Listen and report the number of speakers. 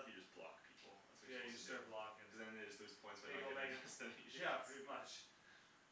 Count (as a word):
two